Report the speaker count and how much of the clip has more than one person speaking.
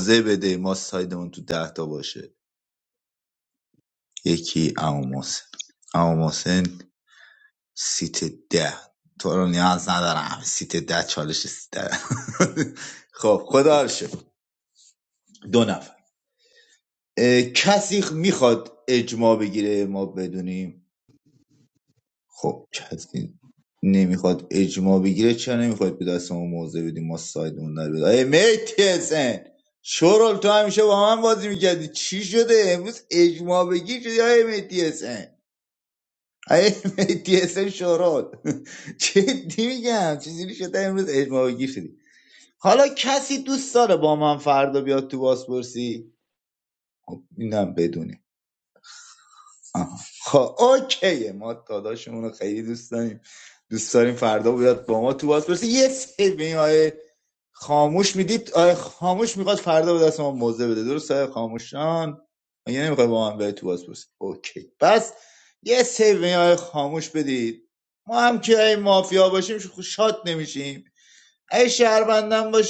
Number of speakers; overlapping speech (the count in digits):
1, no overlap